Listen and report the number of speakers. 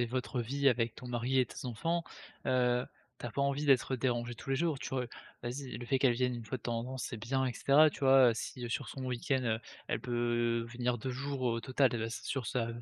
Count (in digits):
1